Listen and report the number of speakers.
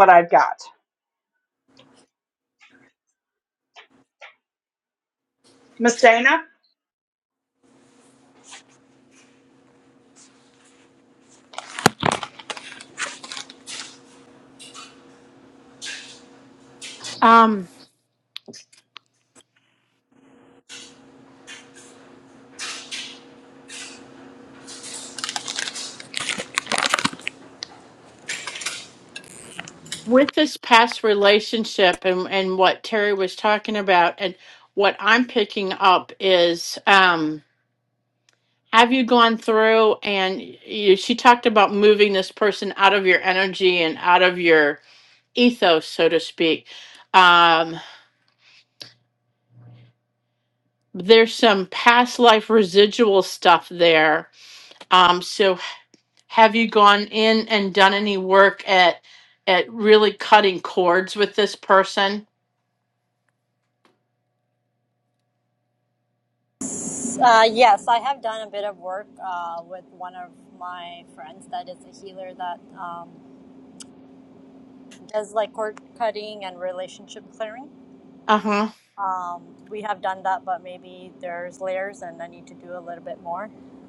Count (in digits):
3